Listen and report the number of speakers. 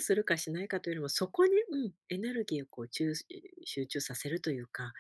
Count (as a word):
one